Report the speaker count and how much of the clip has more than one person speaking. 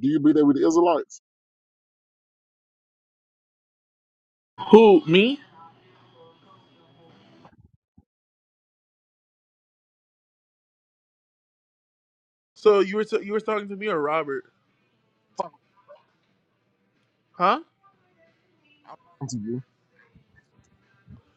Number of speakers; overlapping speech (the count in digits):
2, no overlap